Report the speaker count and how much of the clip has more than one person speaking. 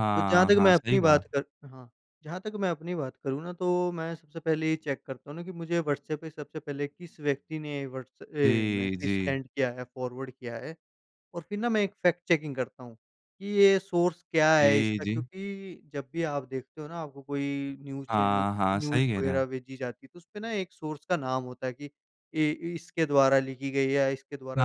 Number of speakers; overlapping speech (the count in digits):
2, about 16%